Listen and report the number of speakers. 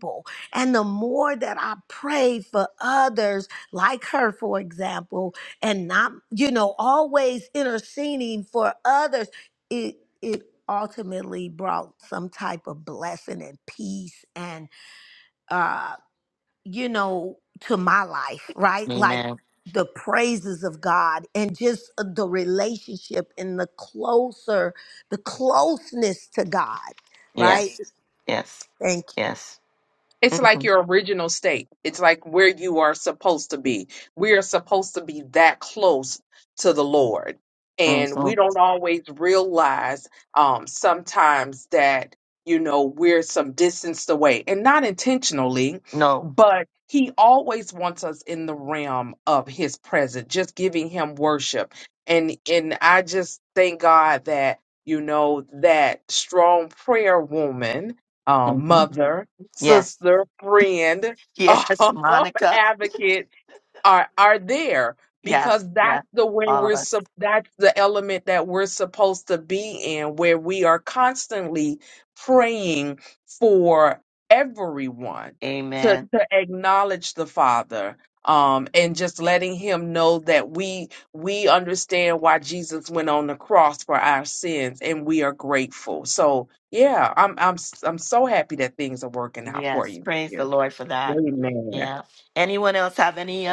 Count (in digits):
3